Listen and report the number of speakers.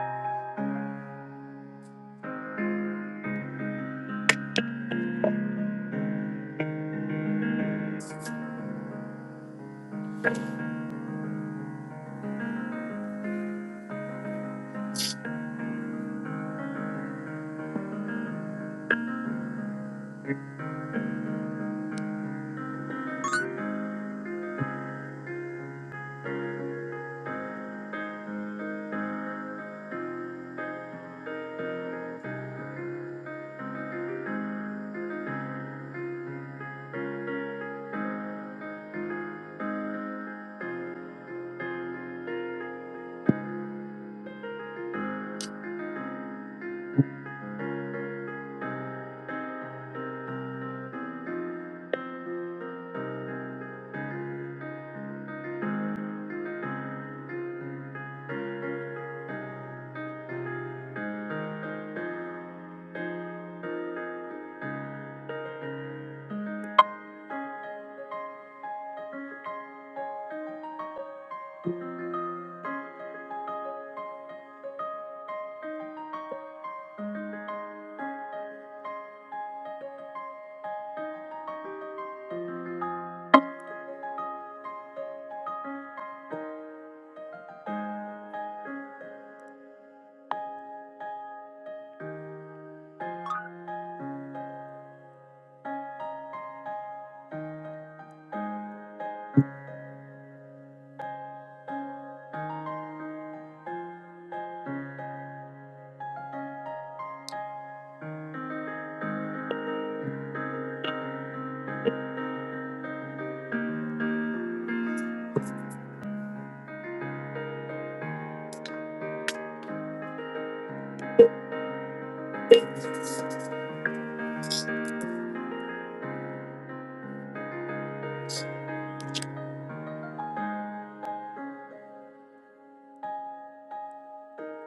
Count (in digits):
0